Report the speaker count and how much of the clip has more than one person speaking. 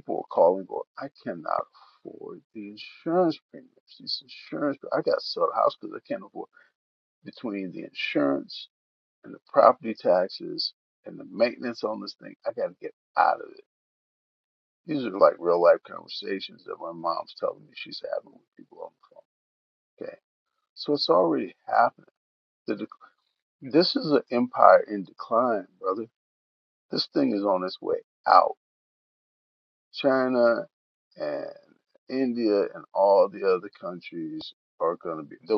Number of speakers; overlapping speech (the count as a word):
one, no overlap